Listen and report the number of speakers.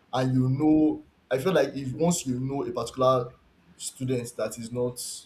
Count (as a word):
one